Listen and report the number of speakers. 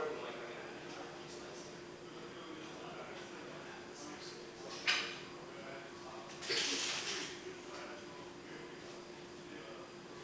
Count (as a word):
one